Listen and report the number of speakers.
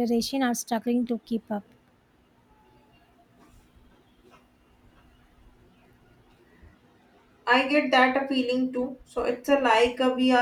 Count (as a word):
two